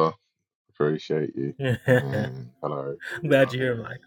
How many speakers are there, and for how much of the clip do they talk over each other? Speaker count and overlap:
two, about 18%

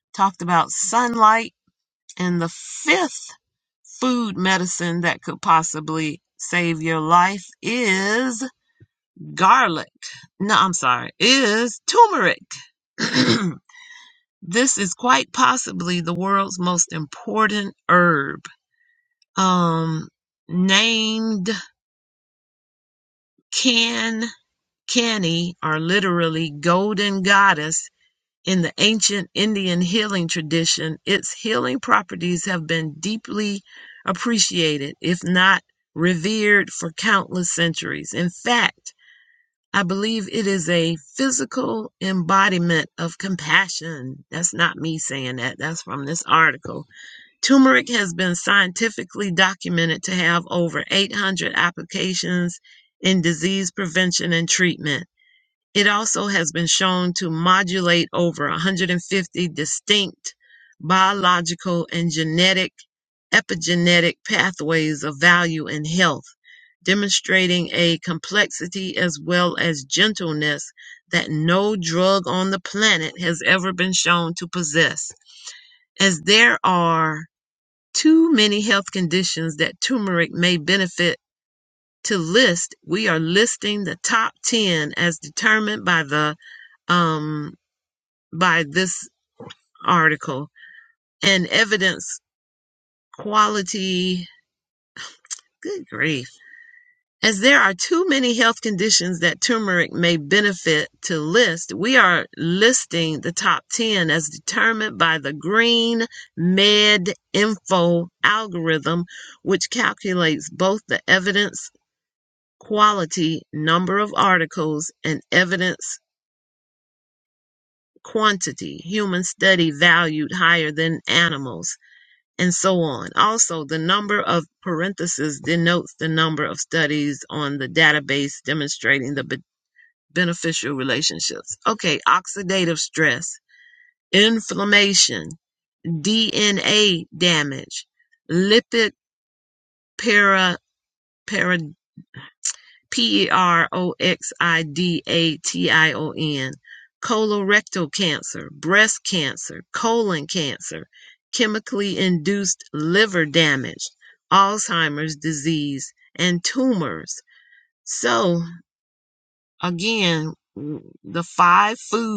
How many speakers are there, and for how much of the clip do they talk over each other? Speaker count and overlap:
one, no overlap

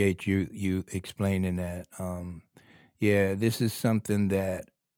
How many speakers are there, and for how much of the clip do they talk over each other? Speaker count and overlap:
one, no overlap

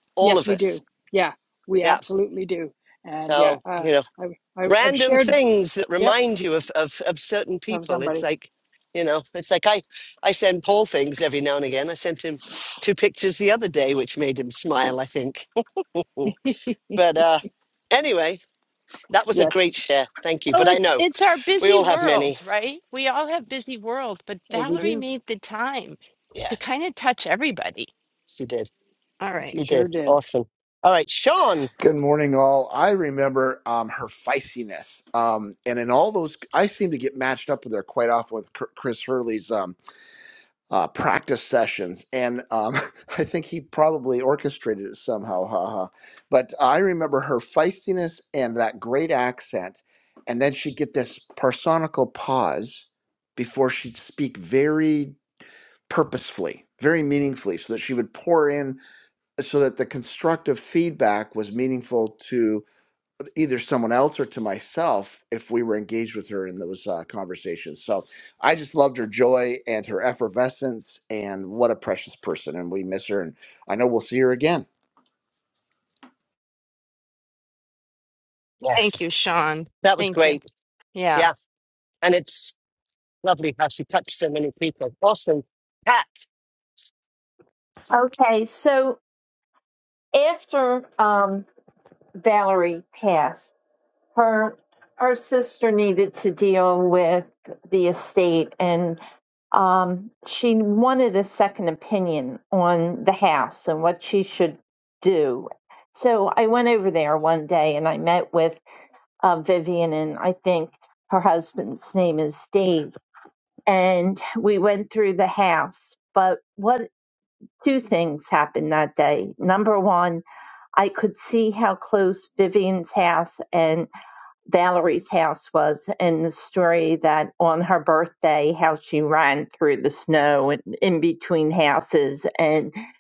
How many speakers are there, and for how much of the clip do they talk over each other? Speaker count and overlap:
five, about 5%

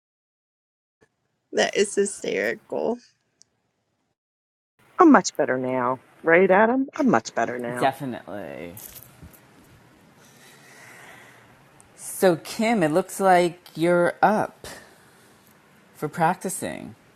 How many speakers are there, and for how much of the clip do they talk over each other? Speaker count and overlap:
three, about 1%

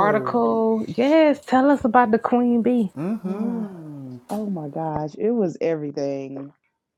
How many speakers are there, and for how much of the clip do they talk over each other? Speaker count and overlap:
three, about 13%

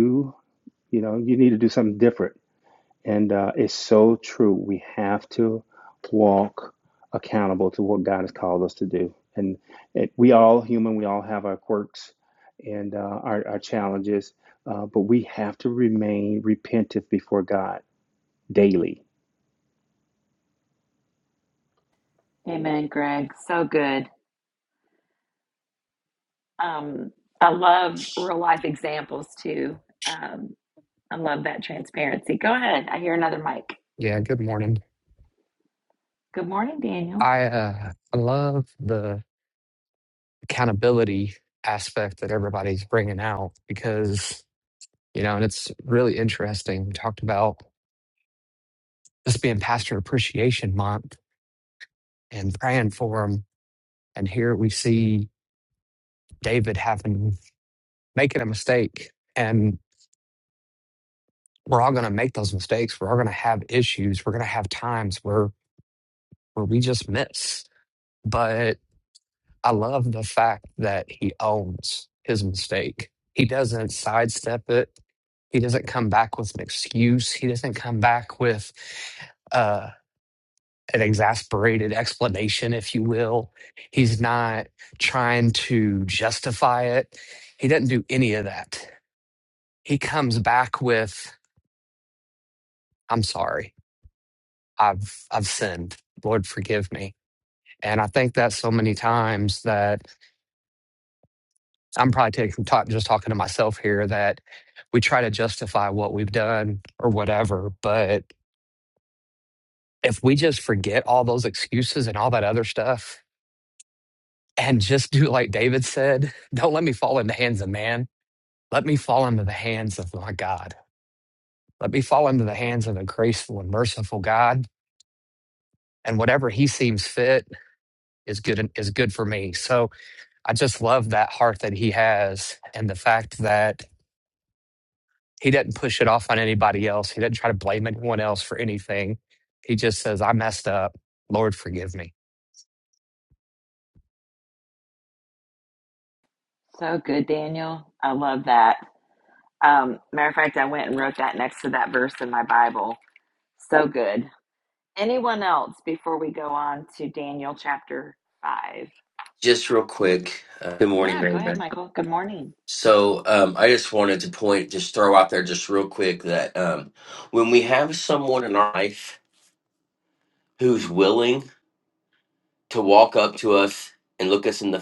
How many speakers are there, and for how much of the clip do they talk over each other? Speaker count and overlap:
four, under 1%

